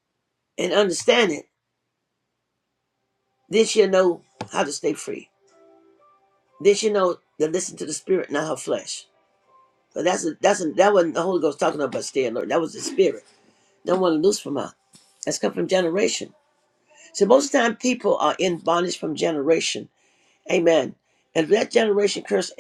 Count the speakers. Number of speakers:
1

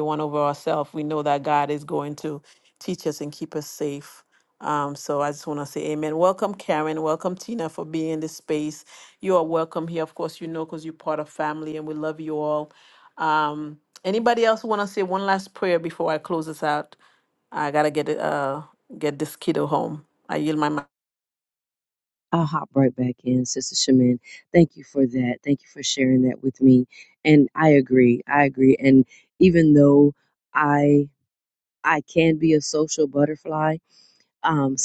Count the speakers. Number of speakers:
2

